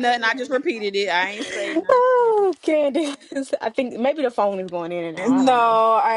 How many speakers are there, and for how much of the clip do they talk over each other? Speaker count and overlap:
3, about 17%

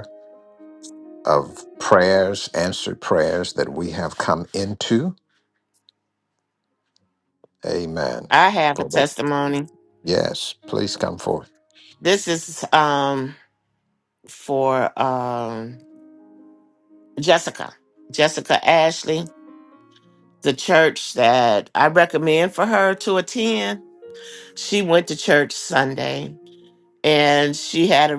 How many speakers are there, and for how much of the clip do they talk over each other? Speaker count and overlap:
2, about 1%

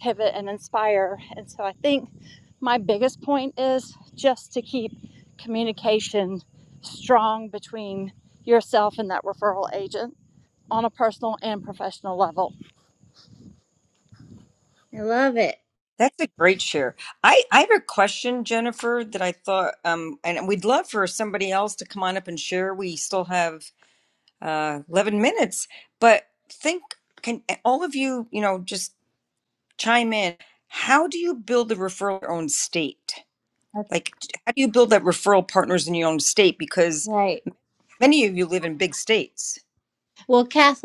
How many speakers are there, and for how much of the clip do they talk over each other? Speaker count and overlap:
3, no overlap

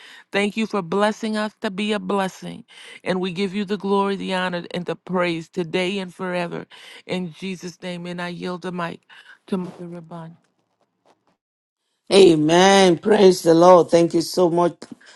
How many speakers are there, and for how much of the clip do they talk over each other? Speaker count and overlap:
2, no overlap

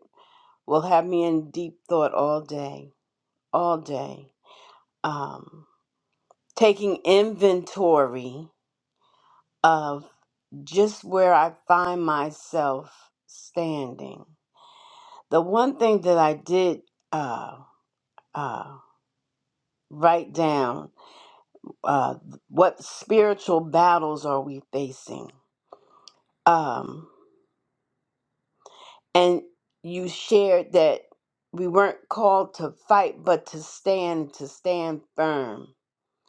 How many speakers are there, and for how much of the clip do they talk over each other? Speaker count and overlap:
1, no overlap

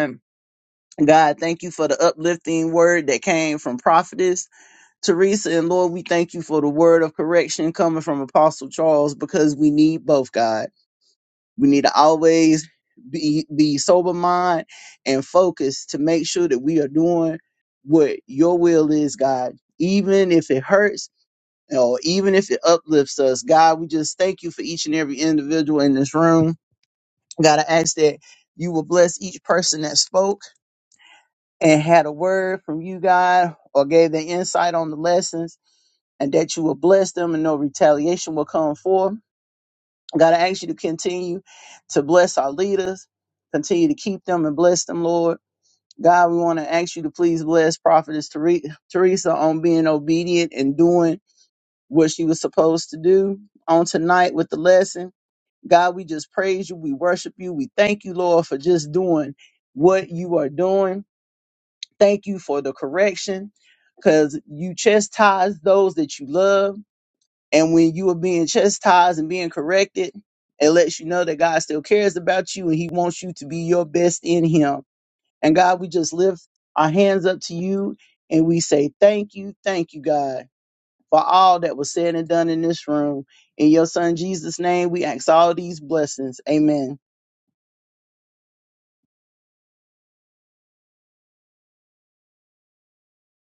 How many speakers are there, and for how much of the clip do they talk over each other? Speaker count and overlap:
1, no overlap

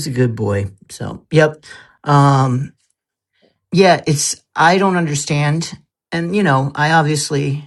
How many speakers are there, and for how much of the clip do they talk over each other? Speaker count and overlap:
1, no overlap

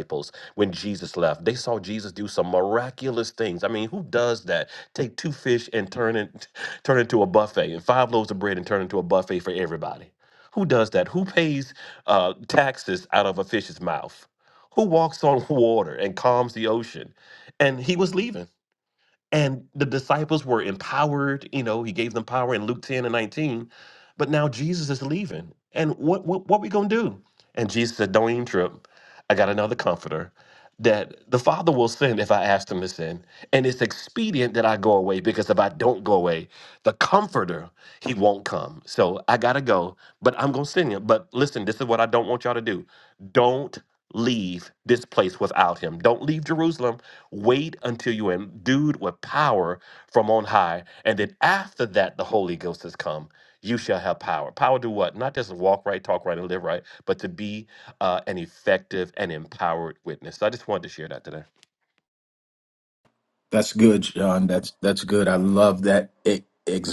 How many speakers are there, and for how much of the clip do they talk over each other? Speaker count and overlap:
2, no overlap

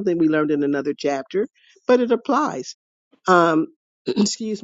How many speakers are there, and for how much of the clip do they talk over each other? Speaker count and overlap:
1, no overlap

